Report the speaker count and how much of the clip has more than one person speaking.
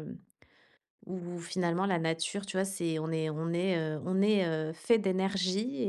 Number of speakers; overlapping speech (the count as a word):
one, no overlap